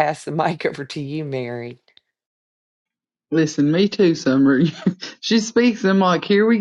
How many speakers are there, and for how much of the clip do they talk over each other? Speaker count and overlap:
two, no overlap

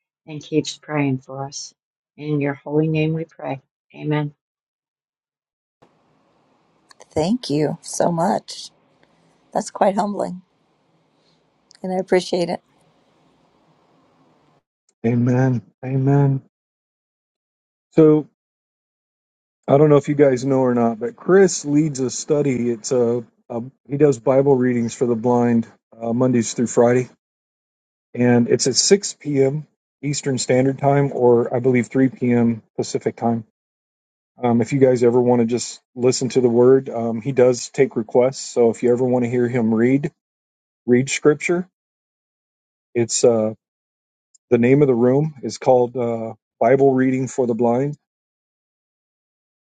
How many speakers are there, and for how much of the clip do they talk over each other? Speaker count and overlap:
three, no overlap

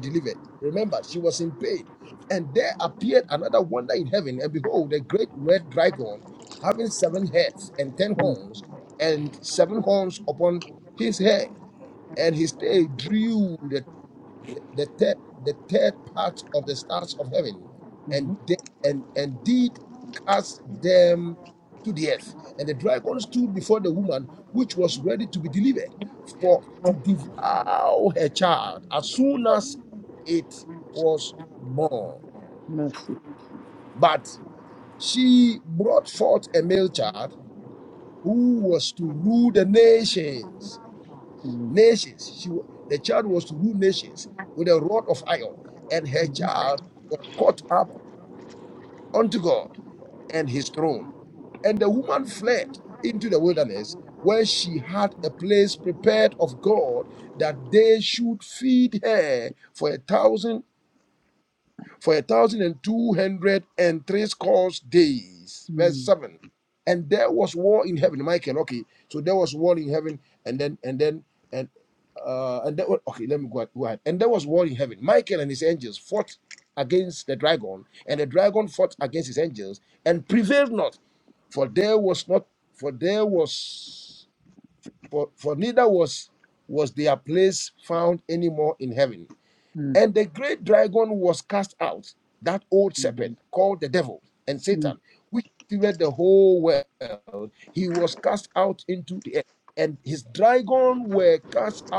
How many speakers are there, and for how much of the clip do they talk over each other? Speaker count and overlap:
two, about 2%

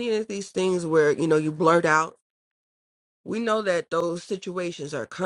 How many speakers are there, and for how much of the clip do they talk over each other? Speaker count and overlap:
one, no overlap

